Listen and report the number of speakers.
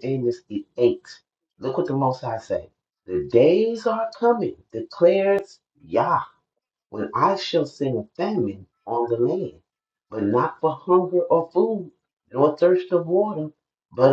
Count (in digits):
1